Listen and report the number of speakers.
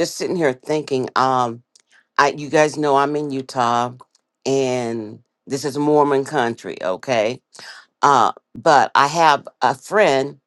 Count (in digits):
1